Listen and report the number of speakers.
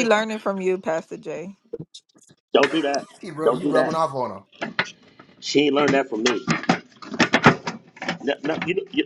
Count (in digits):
3